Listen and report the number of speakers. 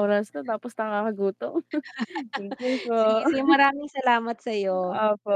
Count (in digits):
2